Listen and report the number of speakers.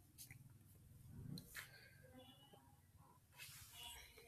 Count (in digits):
0